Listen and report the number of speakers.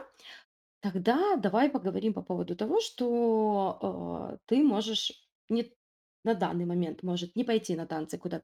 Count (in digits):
1